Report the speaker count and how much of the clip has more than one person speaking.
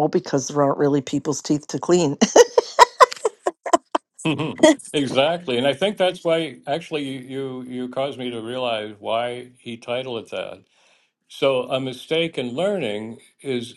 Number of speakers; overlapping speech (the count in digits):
2, no overlap